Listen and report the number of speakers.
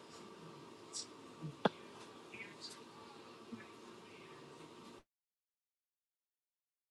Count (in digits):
0